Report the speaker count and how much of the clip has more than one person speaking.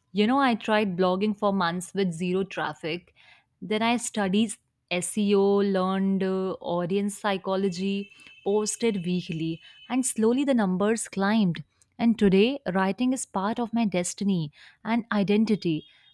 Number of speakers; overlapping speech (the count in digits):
1, no overlap